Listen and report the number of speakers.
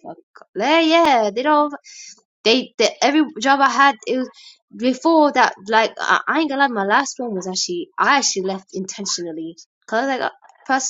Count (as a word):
one